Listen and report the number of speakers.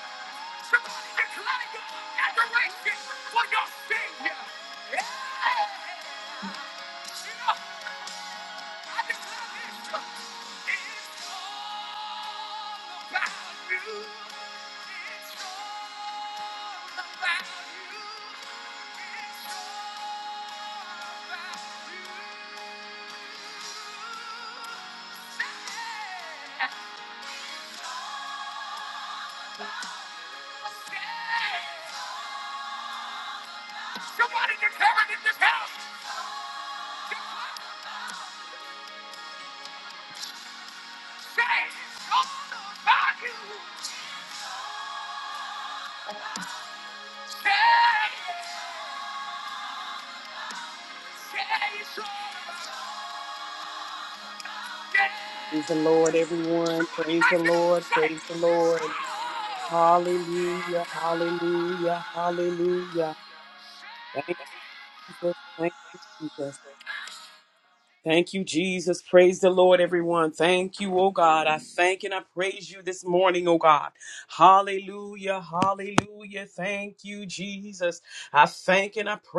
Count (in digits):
2